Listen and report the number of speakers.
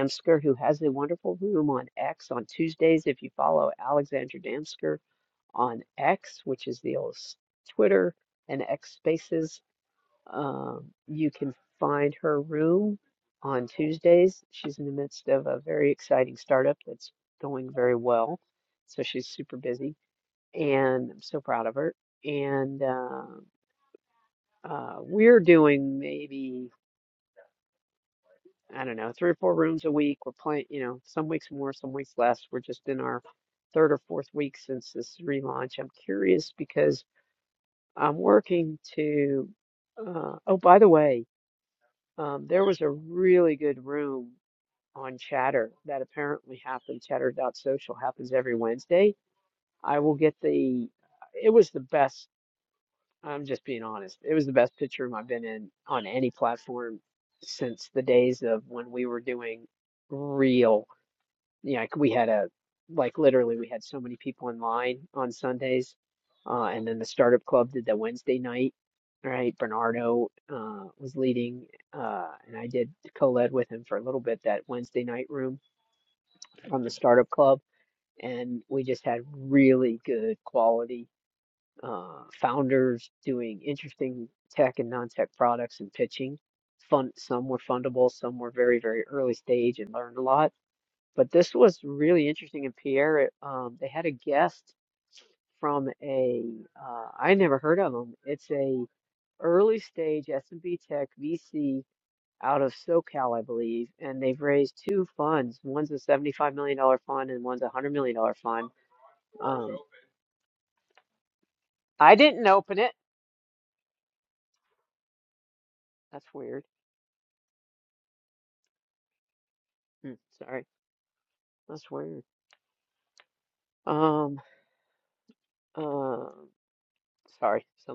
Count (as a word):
one